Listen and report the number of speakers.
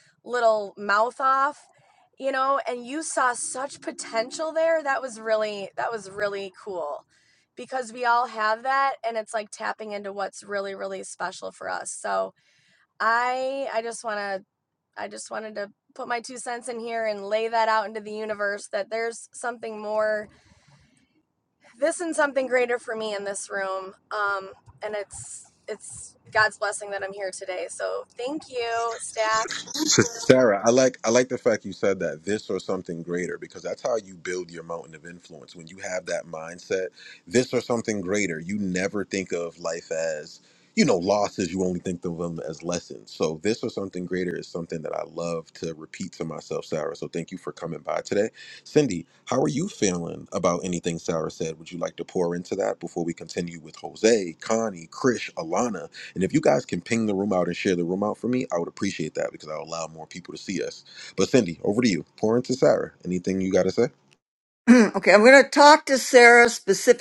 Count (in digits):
3